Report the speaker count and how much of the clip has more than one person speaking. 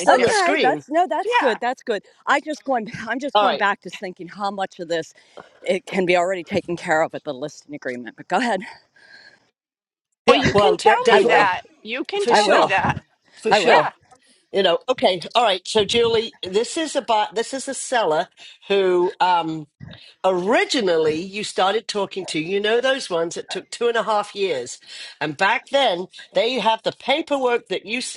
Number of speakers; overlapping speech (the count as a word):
three, about 13%